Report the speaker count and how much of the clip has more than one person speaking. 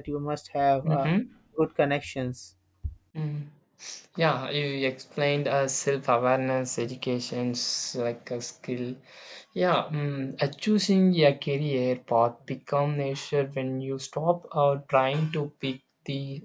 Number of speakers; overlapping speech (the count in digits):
2, about 2%